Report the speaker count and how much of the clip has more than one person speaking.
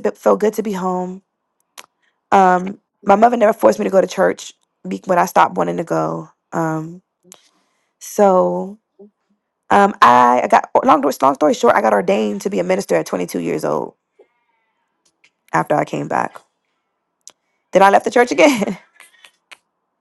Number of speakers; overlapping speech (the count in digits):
1, no overlap